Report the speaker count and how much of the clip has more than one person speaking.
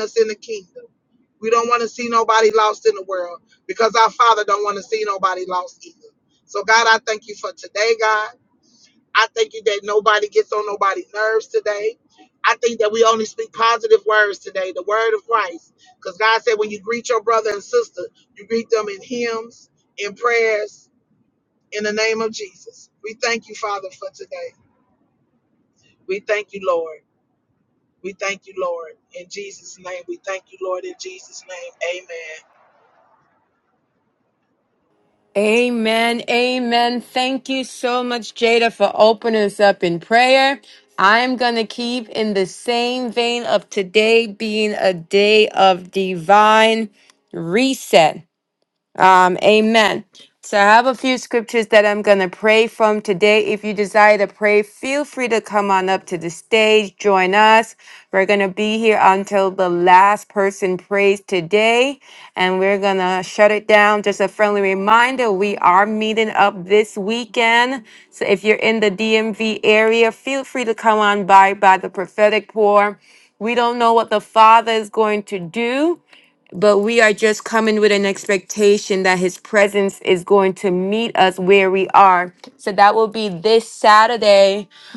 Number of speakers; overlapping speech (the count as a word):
two, no overlap